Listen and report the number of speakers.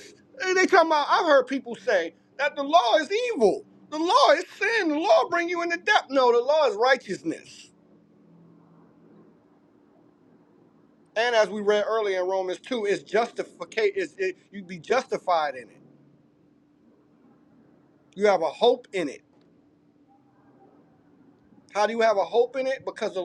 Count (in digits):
1